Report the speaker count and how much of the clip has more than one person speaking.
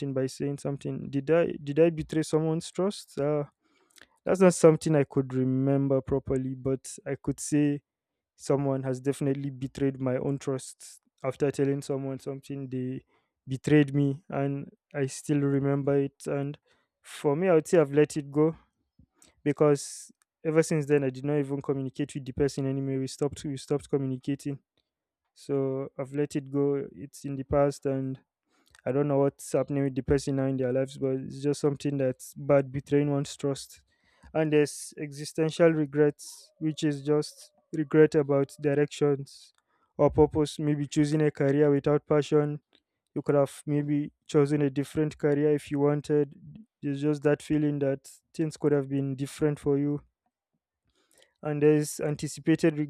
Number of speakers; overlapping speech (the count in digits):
1, no overlap